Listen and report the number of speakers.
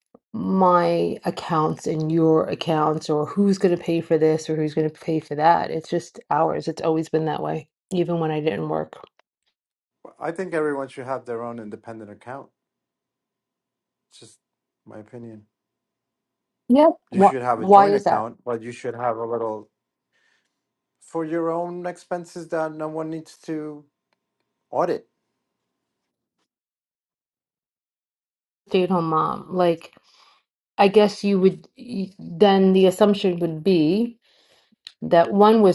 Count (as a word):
two